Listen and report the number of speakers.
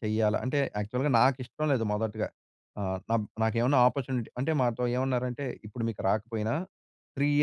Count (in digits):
1